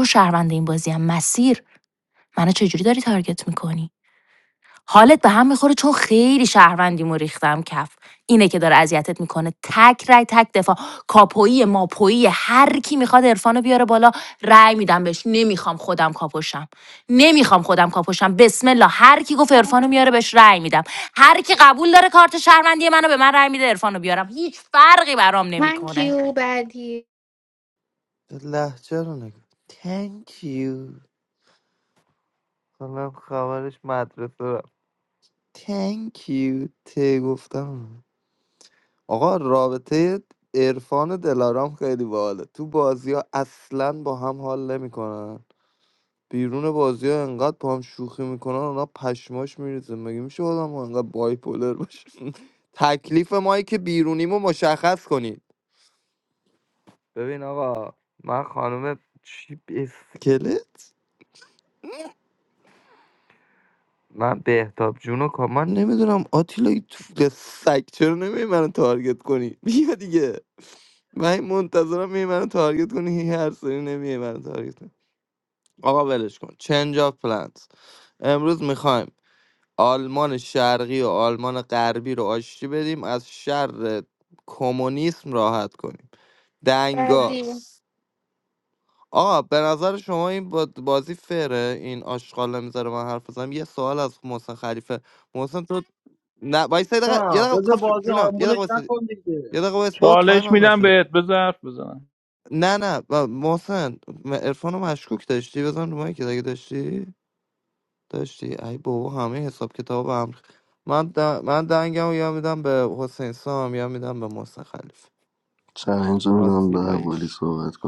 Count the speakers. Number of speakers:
six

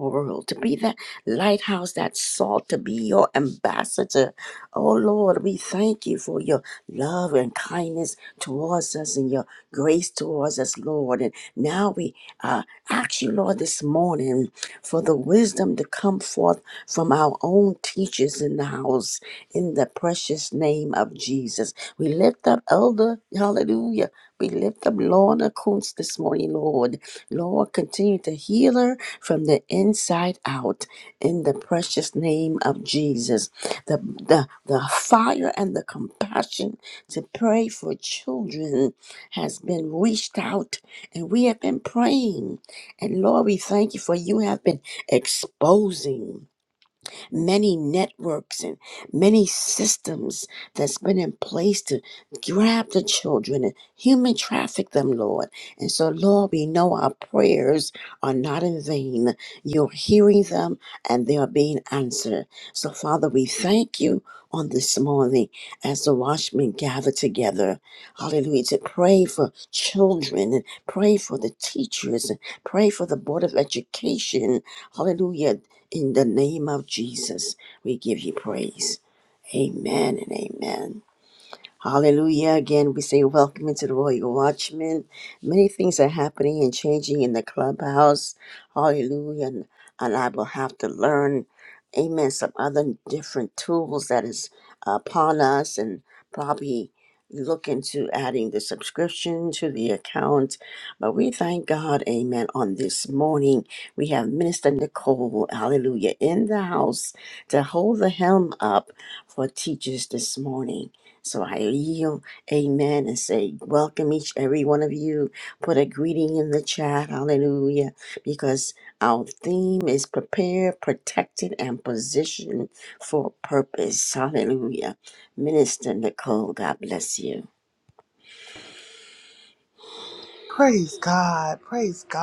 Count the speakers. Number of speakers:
two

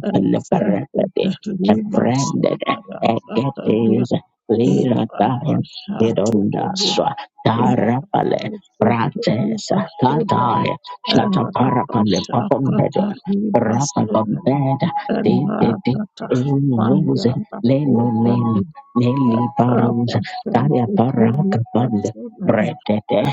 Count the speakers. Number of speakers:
two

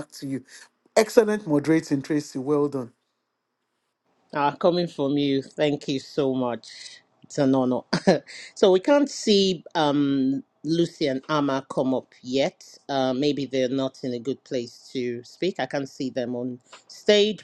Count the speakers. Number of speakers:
two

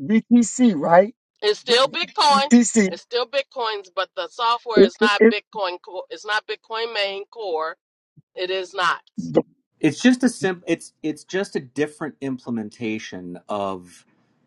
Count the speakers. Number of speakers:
three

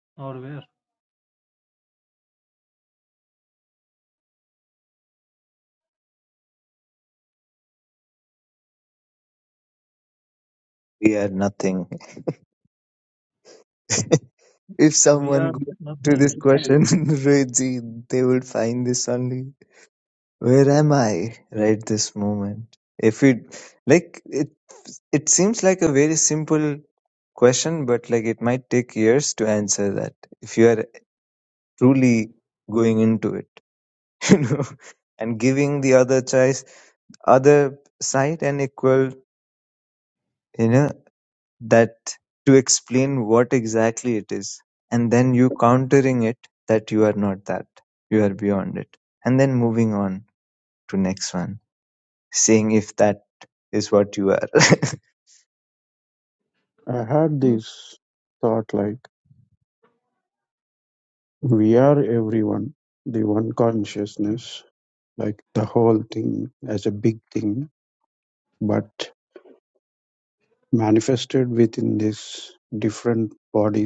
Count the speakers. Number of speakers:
three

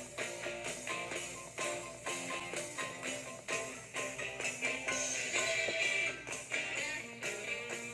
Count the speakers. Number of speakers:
zero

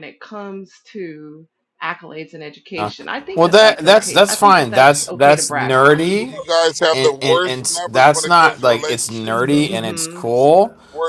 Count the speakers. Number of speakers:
three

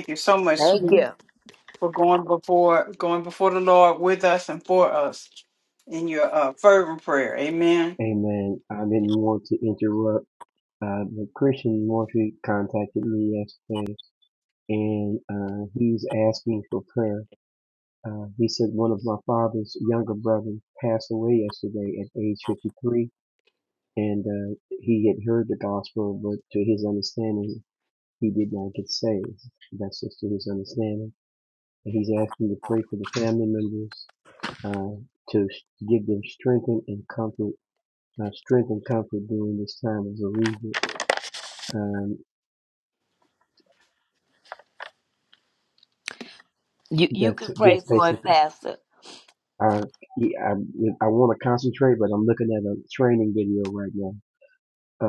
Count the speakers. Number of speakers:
three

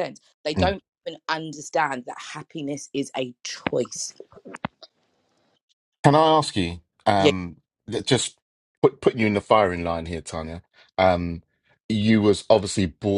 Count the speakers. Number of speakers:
two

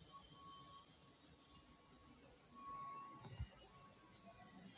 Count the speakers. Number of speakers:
zero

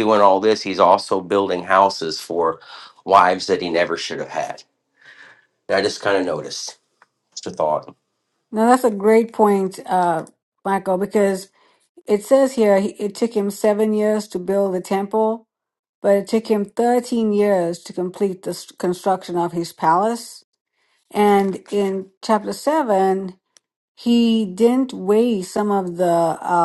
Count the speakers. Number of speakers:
two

